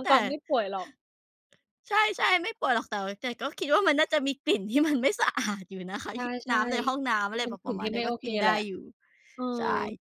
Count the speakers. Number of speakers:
two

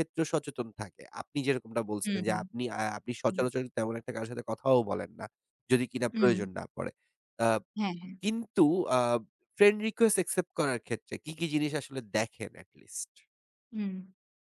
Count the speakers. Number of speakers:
two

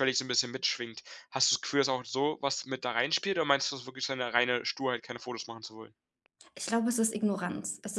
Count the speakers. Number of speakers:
two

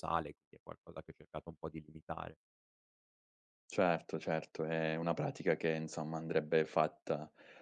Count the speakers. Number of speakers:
two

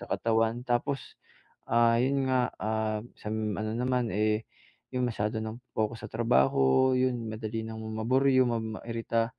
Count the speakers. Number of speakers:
one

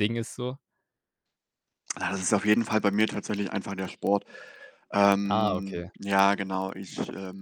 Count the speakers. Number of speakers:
two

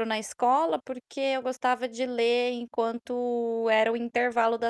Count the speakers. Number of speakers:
one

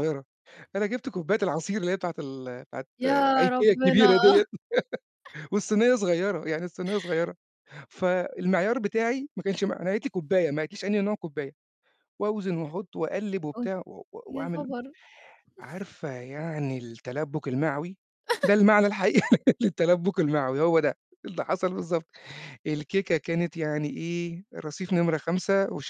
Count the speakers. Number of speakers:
two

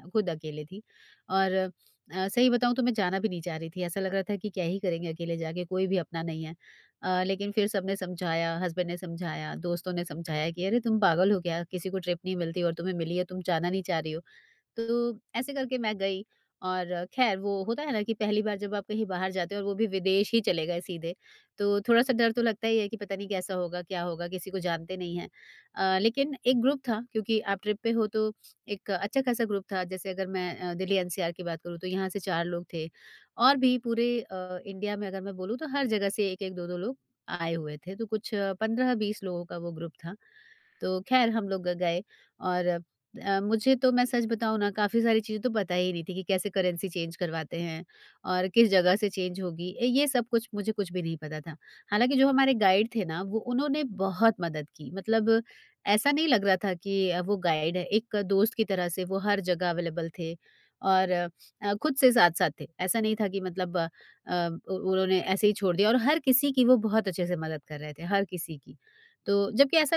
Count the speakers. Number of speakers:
one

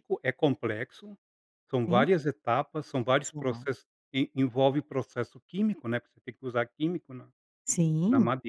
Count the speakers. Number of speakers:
two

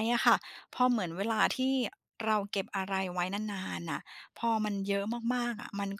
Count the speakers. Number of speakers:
one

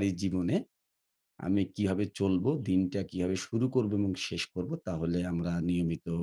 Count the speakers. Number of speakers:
one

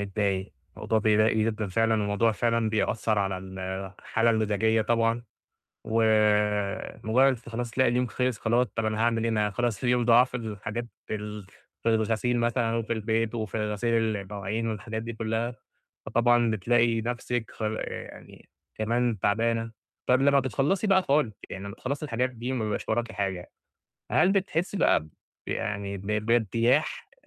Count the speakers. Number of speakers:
one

